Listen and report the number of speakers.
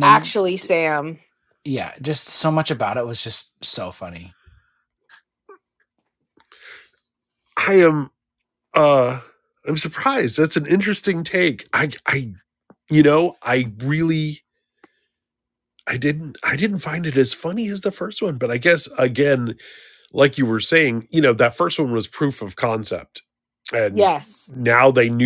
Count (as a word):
three